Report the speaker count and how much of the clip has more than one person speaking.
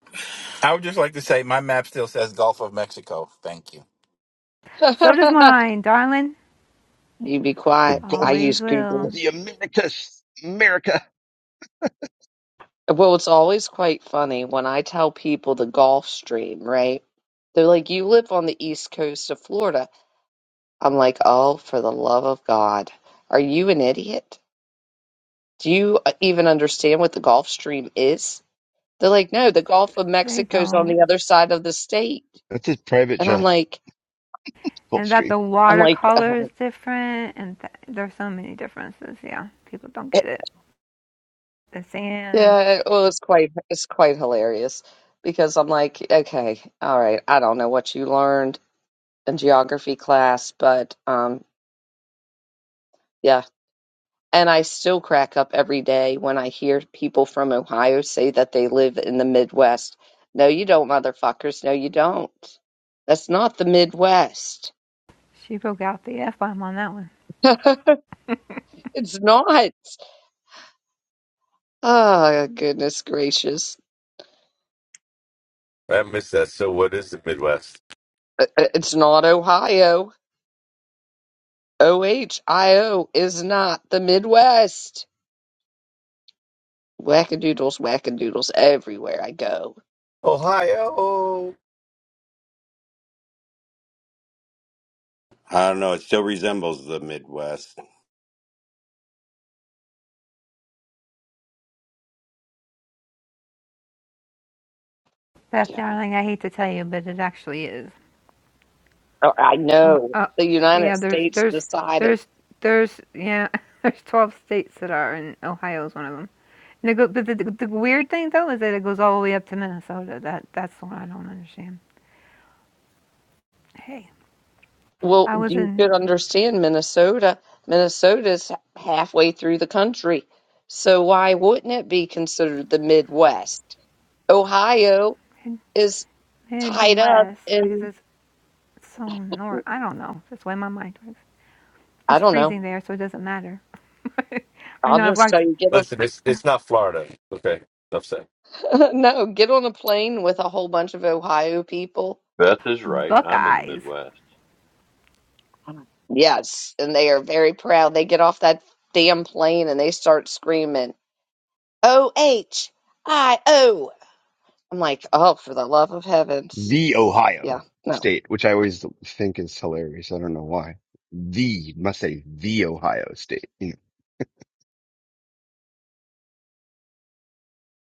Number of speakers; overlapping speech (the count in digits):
7, about 5%